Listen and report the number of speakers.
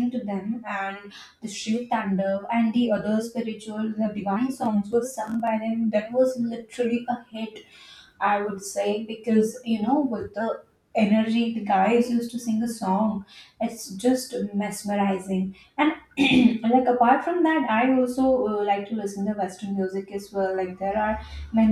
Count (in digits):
1